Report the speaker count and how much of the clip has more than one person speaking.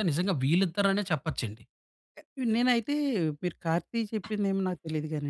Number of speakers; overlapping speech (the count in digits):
2, no overlap